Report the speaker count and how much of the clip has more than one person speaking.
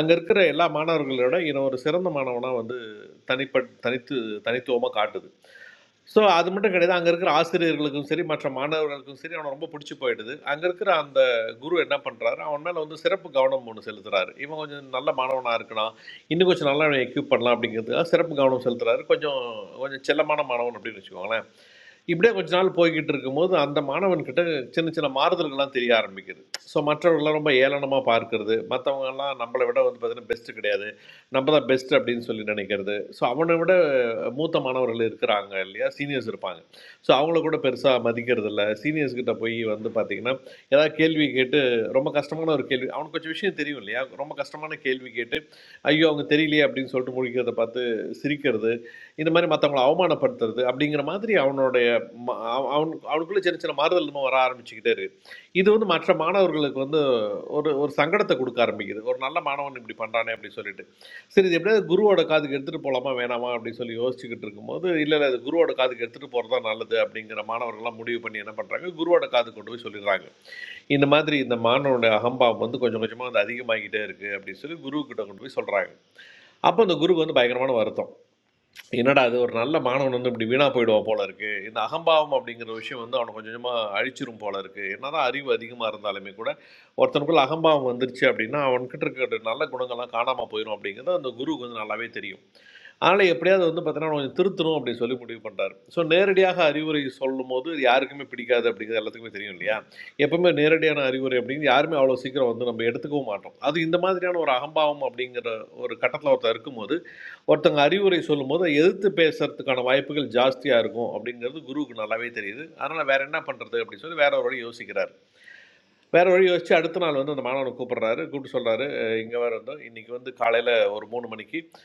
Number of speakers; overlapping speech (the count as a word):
one, no overlap